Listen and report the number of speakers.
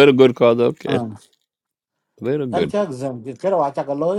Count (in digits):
2